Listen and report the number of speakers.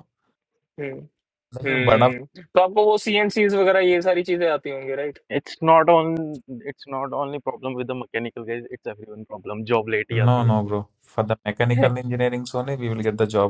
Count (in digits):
3